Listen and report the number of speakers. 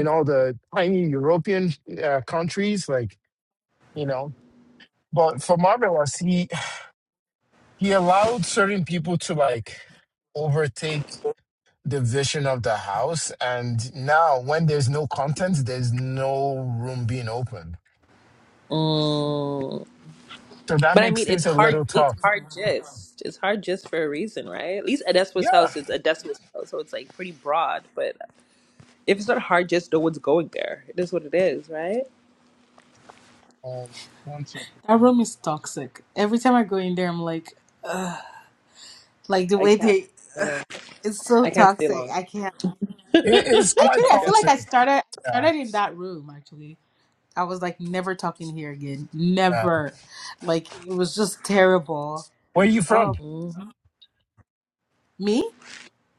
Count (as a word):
three